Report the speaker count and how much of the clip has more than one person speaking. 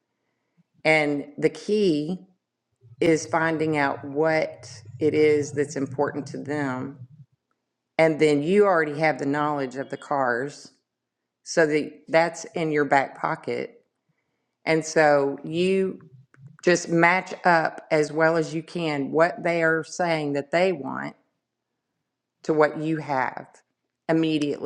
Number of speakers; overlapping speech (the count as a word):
one, no overlap